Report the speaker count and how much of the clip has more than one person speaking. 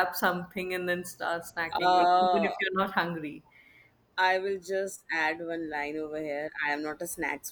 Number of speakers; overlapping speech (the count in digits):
2, about 12%